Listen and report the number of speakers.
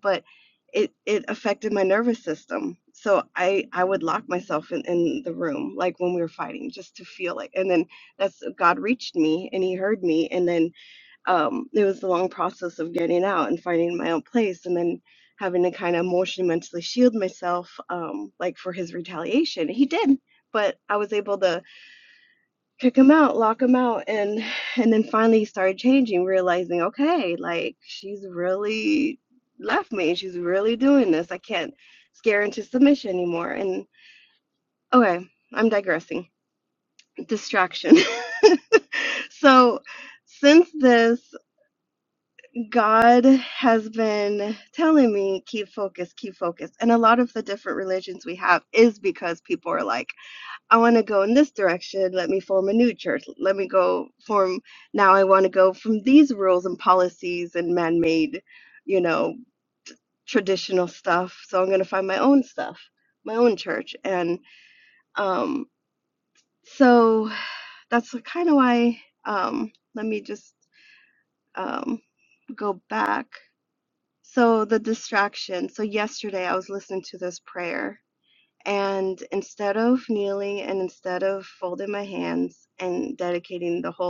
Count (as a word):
one